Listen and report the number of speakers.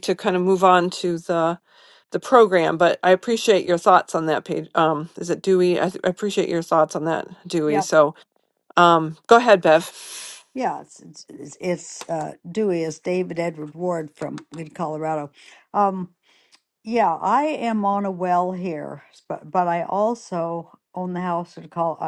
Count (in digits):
2